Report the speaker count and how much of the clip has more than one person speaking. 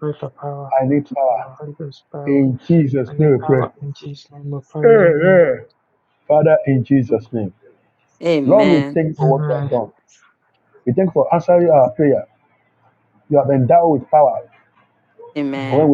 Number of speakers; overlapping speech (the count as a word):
three, about 22%